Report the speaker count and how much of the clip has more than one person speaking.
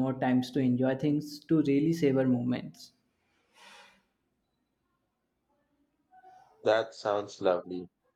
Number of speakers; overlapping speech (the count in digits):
2, no overlap